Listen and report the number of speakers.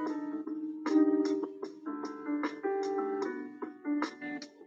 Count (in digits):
0